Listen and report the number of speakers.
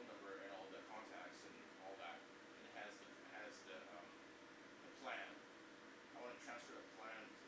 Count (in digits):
1